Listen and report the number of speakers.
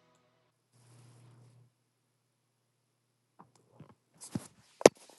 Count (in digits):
0